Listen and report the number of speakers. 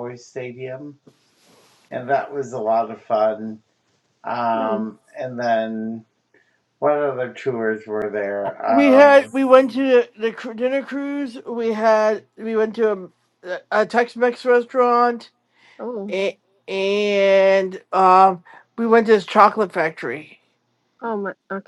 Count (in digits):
3